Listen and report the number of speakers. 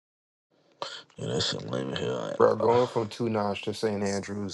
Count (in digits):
2